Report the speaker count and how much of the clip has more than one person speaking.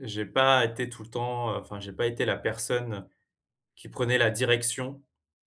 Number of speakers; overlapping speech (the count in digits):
1, no overlap